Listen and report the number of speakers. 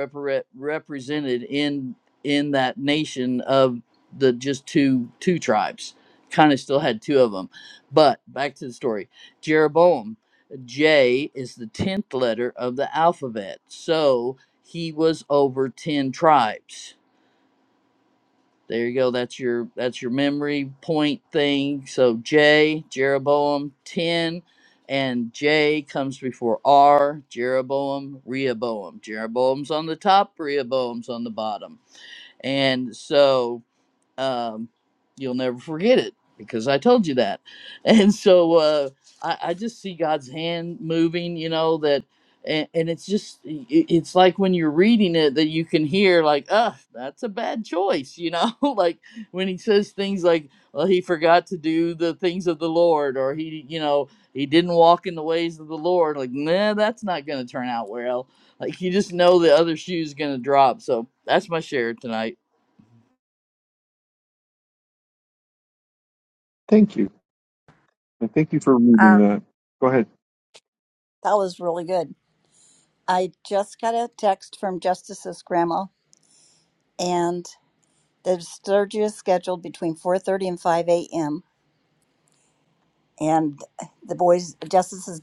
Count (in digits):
3